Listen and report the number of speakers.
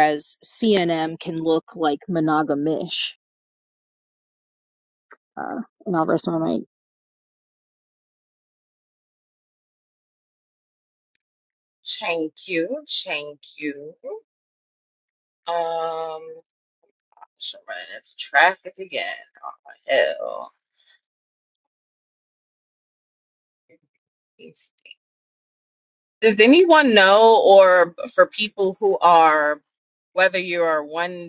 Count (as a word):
two